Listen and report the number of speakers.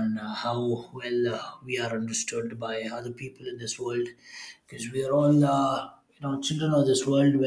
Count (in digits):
1